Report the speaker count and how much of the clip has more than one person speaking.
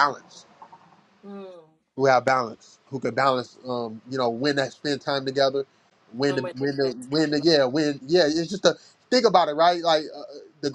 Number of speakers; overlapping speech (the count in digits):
2, about 11%